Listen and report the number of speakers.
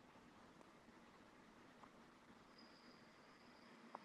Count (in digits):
0